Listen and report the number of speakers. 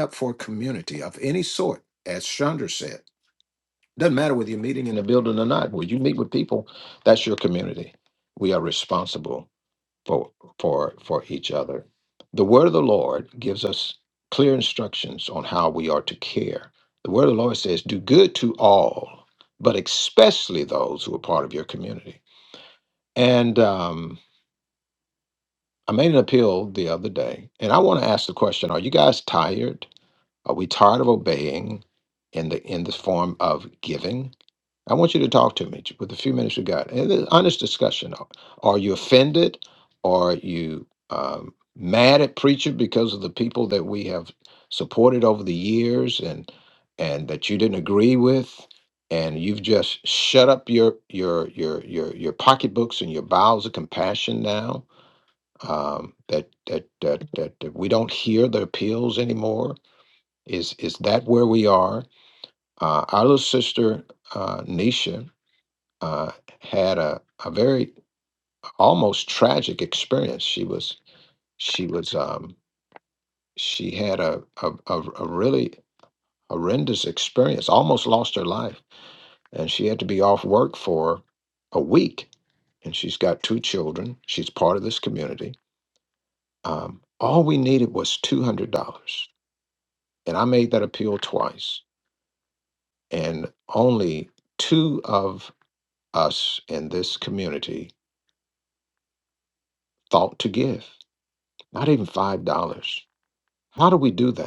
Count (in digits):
1